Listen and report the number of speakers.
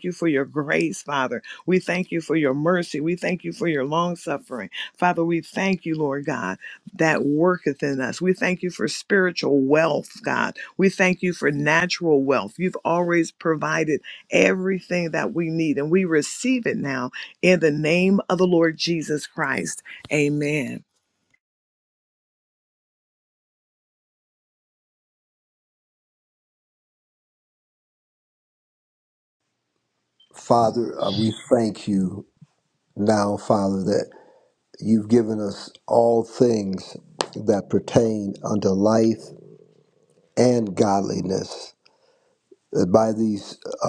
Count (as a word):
two